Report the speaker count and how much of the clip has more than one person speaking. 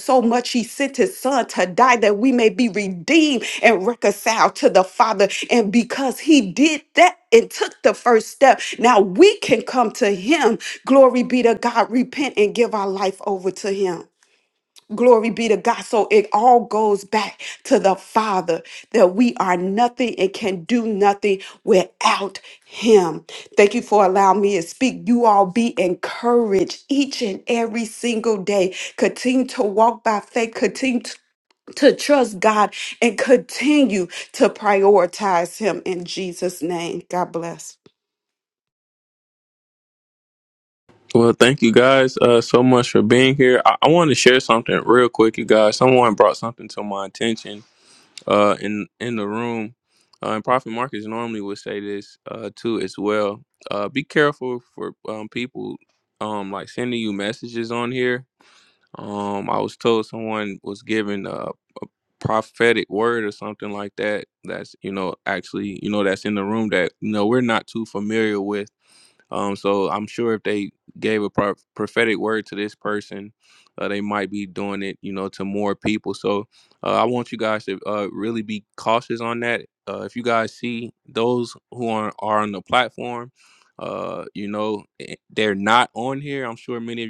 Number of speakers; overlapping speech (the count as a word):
two, no overlap